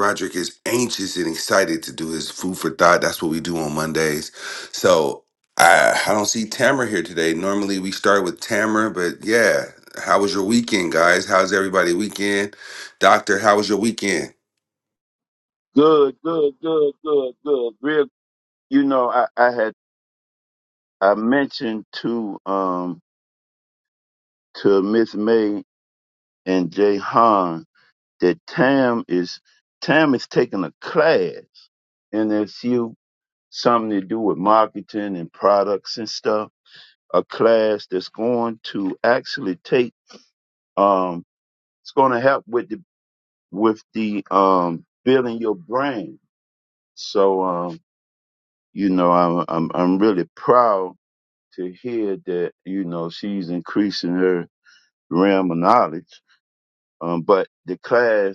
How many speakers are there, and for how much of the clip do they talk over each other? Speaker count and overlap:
two, no overlap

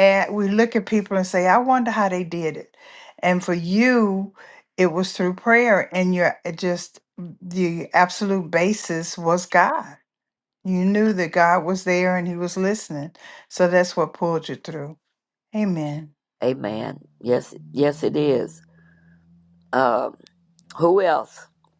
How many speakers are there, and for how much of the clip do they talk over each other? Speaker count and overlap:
two, no overlap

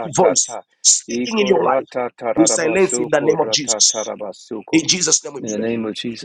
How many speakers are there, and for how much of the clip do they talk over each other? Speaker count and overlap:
two, about 48%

